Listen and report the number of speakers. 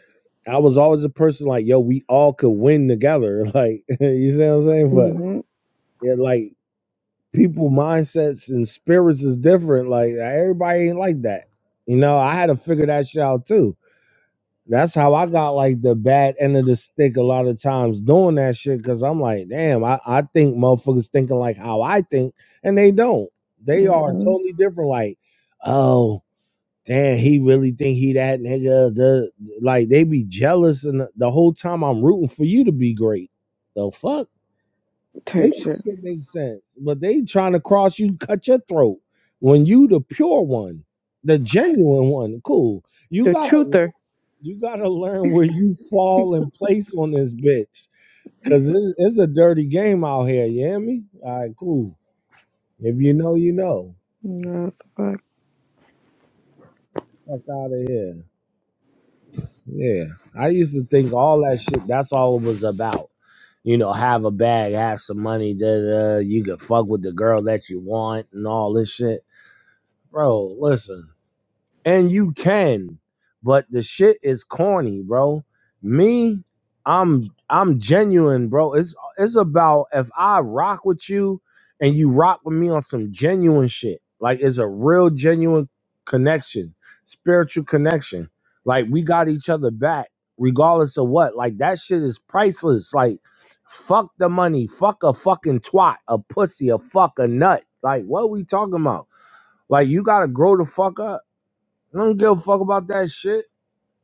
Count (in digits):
2